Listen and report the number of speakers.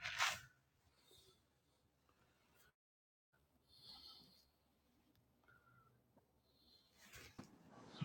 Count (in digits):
0